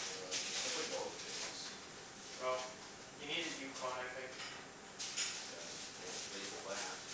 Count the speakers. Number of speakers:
two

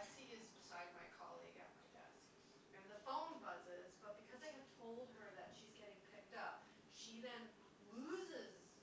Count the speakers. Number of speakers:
one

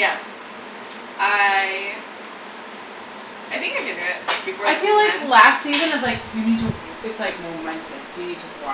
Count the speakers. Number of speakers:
two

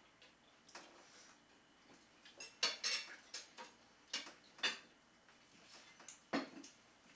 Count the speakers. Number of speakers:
zero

